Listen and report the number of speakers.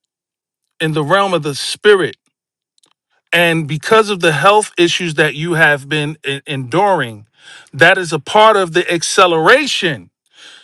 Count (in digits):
1